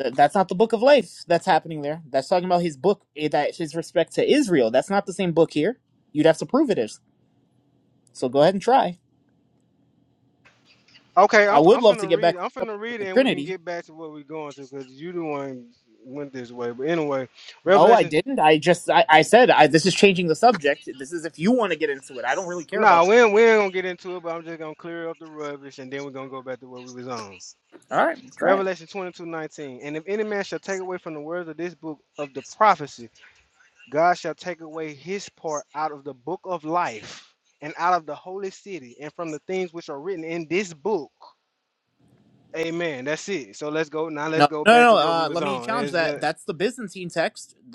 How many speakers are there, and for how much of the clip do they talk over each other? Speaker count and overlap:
2, about 10%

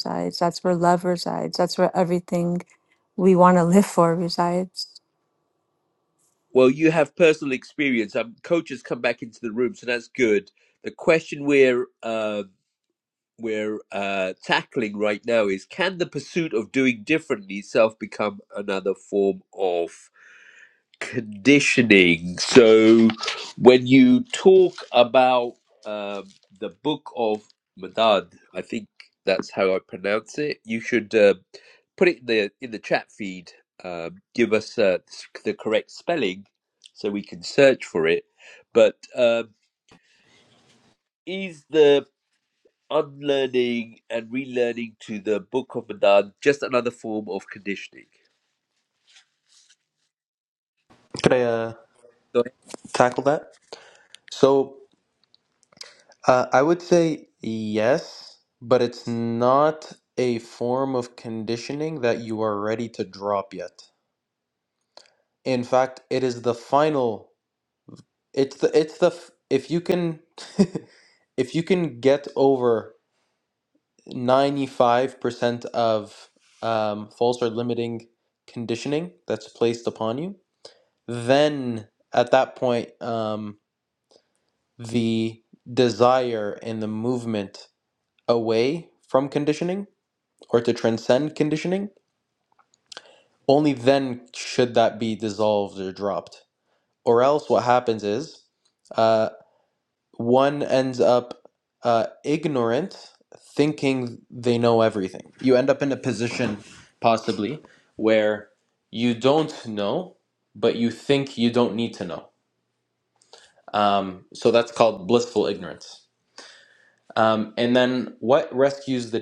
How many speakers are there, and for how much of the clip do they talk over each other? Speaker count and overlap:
3, no overlap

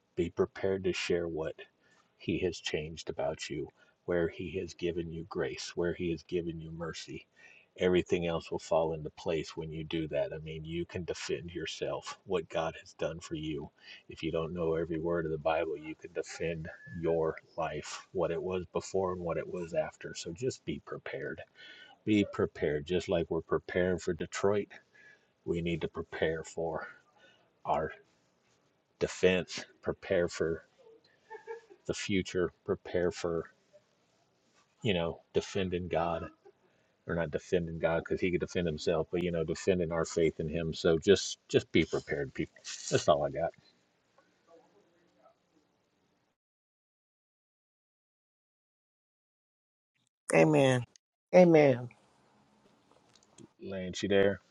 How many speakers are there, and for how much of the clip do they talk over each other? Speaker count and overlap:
2, no overlap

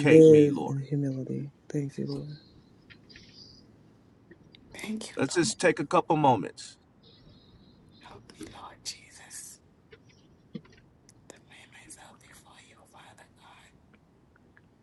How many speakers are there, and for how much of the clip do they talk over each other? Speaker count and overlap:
3, about 7%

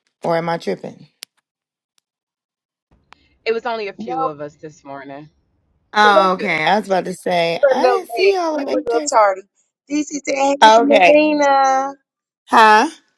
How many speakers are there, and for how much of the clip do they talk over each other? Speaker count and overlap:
3, about 22%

